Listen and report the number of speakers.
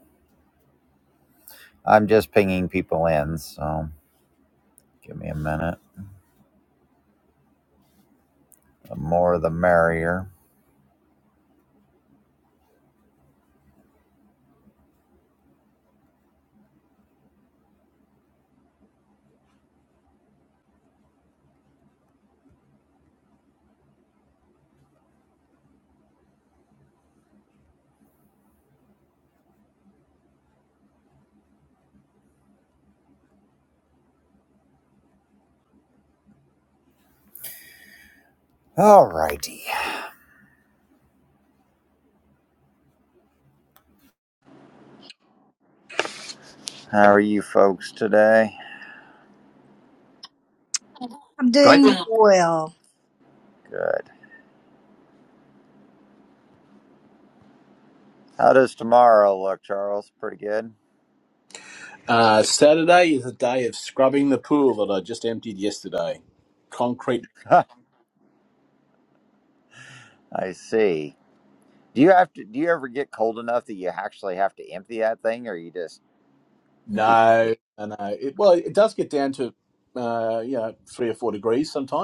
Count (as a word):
three